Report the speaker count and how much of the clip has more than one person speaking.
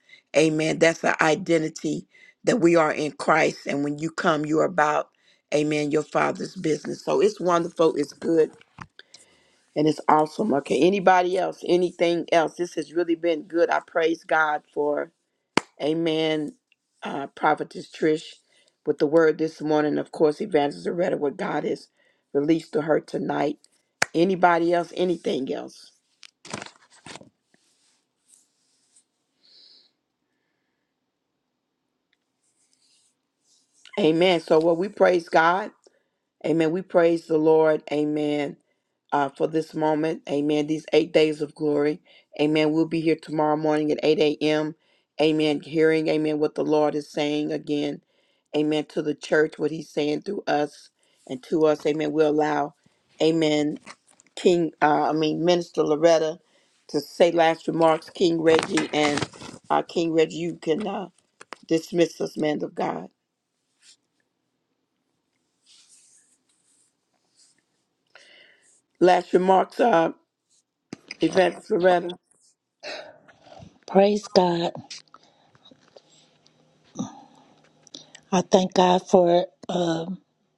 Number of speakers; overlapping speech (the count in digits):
2, no overlap